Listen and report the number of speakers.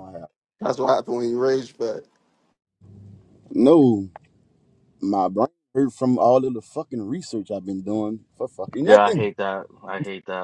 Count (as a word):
three